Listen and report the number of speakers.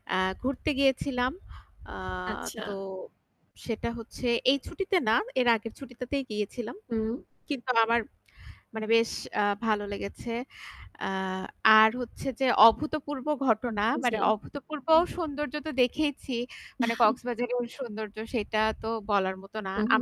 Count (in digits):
2